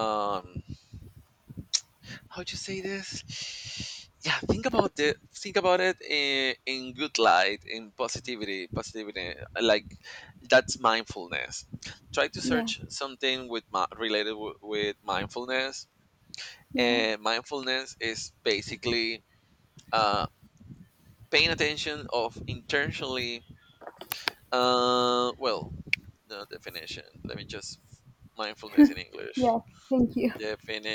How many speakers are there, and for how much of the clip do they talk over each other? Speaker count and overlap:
2, about 2%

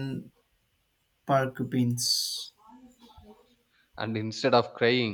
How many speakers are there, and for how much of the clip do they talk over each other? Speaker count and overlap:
2, no overlap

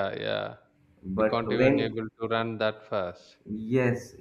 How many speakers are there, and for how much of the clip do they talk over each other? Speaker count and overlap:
2, about 19%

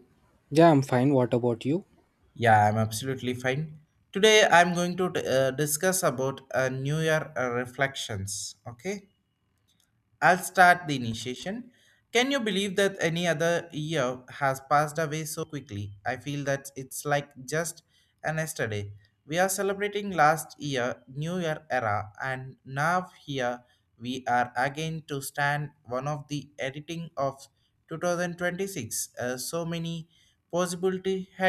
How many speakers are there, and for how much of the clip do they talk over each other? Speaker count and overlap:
2, no overlap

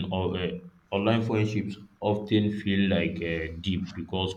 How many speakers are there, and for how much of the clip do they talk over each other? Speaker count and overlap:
1, no overlap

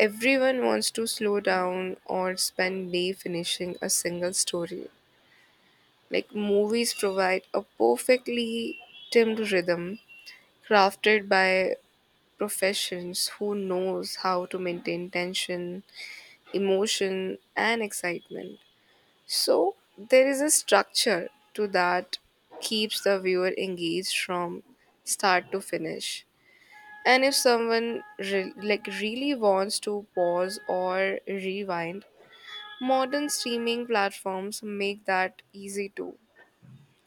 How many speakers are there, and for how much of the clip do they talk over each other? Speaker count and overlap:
1, no overlap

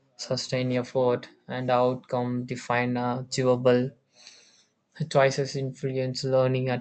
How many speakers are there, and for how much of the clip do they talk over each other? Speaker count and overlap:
1, no overlap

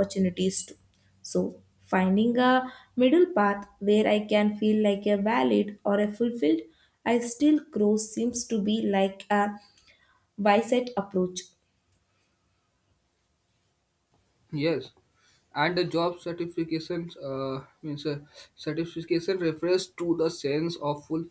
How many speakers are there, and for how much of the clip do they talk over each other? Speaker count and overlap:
2, no overlap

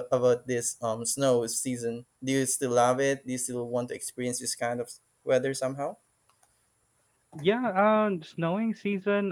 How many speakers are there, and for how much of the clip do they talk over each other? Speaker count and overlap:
2, no overlap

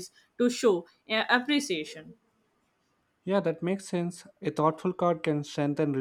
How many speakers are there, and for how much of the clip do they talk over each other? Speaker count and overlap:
2, no overlap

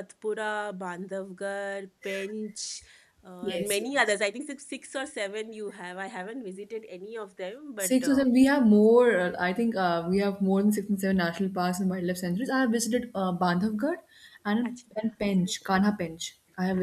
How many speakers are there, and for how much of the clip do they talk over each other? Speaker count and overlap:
2, about 8%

